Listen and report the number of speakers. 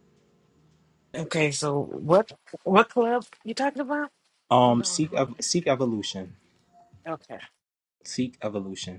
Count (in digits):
2